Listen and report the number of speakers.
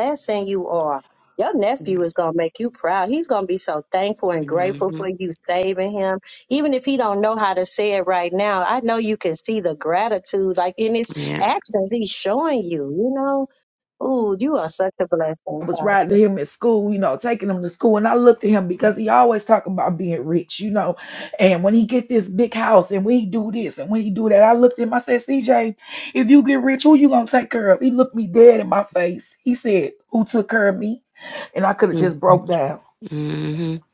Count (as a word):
three